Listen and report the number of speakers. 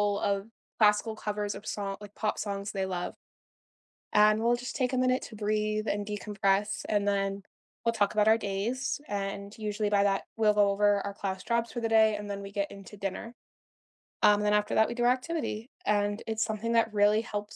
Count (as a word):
one